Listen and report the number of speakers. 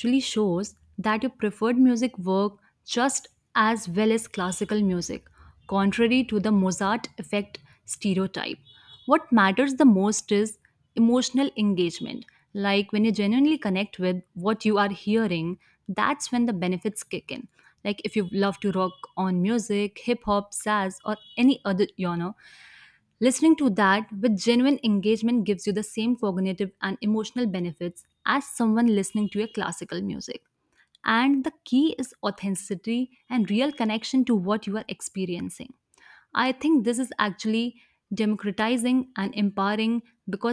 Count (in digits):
1